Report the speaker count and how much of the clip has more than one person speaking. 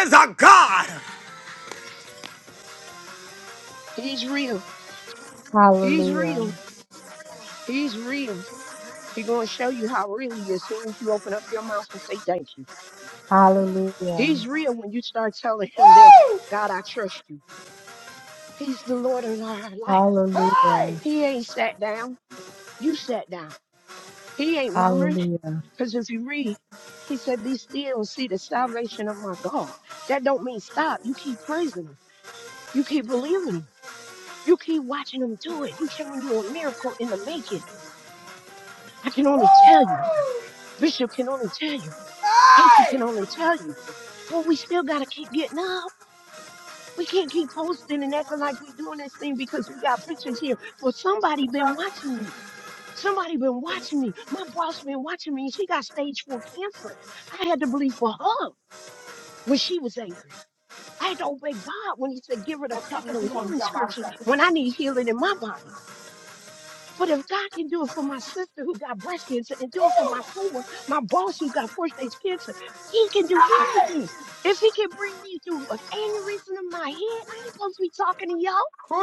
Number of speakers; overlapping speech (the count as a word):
three, about 5%